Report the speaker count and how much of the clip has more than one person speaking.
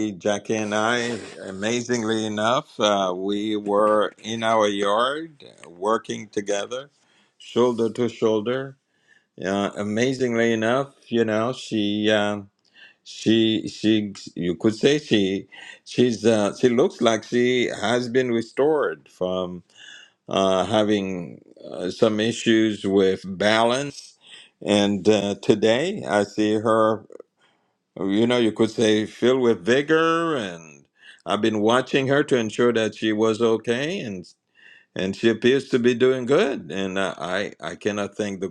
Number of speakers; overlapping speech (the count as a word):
one, no overlap